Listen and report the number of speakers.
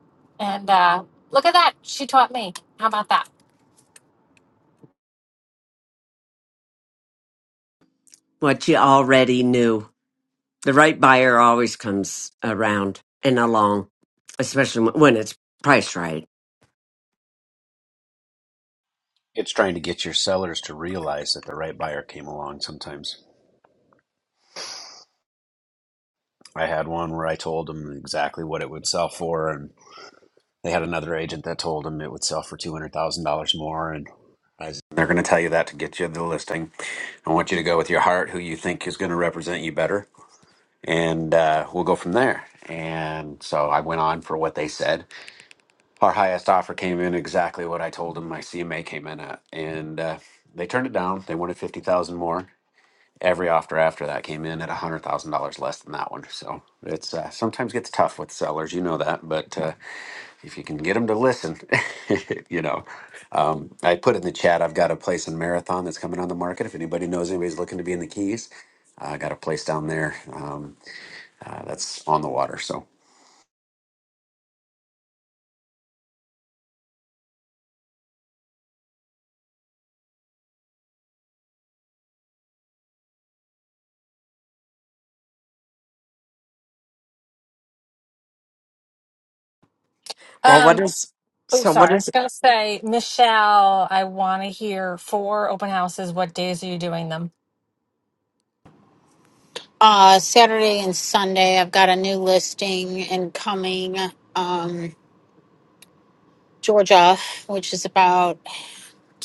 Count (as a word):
four